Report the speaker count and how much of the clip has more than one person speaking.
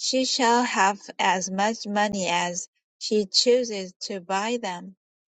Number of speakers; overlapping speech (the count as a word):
one, no overlap